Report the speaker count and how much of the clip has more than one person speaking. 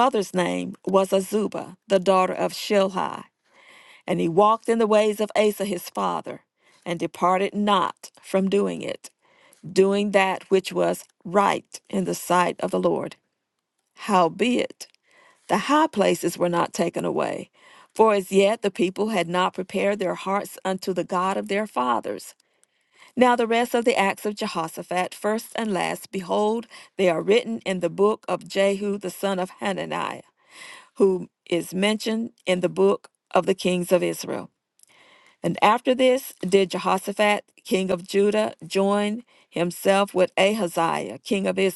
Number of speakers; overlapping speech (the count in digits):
1, no overlap